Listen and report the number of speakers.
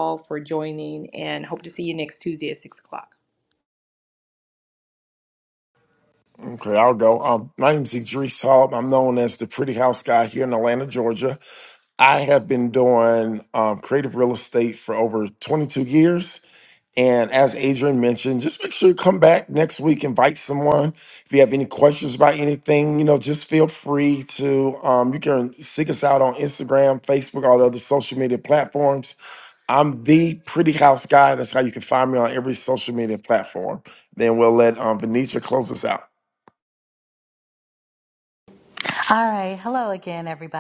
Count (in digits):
3